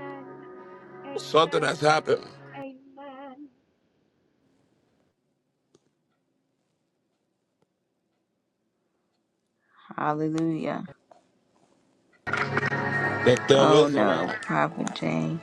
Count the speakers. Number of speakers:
3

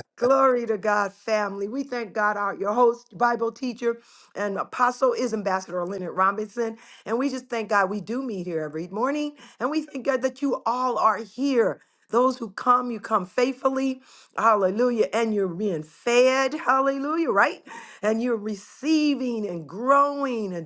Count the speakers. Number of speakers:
1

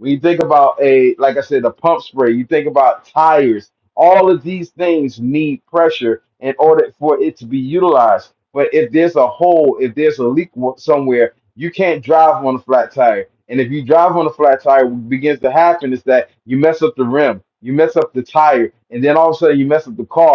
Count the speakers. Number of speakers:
1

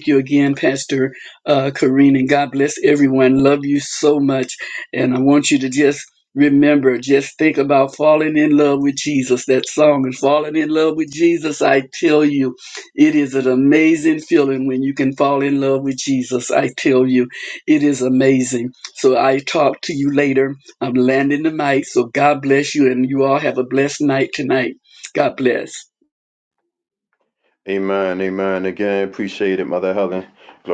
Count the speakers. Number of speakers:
2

